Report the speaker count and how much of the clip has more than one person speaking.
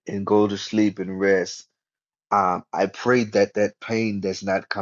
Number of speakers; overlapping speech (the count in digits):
1, no overlap